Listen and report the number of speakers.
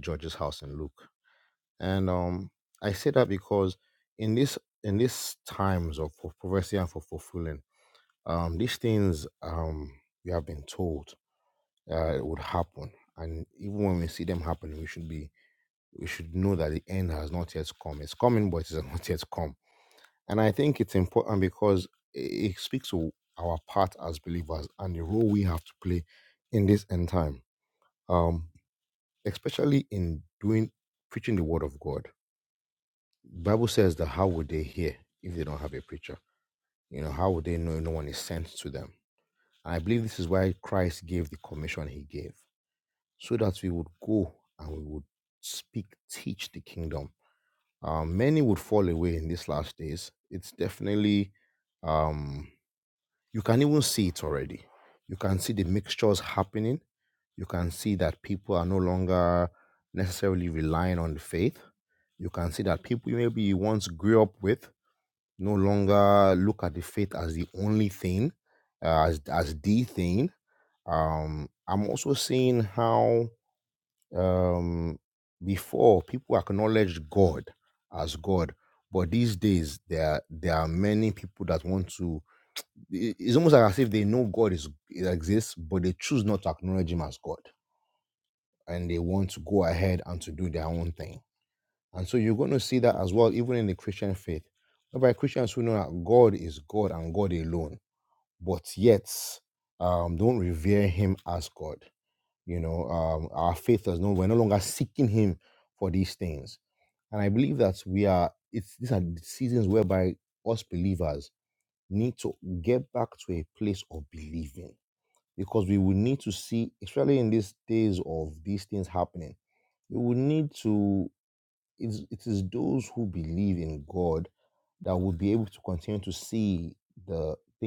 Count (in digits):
1